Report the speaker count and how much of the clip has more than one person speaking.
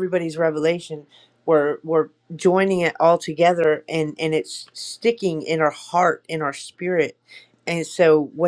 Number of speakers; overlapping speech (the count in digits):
1, no overlap